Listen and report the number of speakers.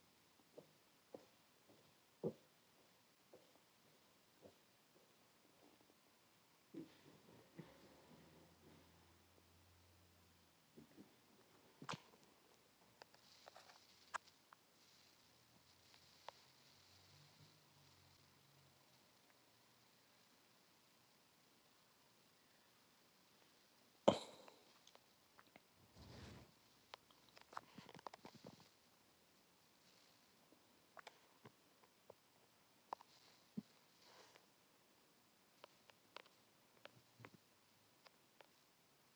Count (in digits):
0